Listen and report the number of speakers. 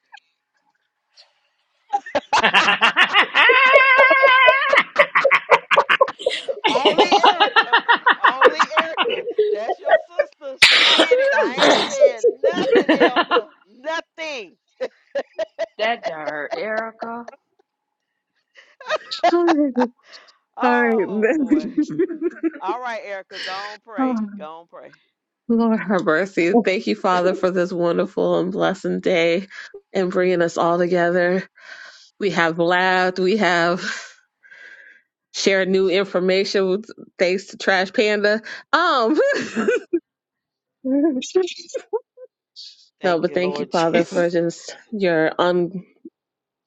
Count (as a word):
three